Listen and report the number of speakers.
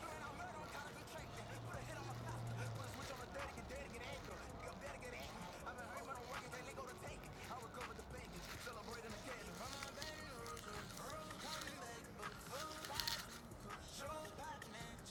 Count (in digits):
0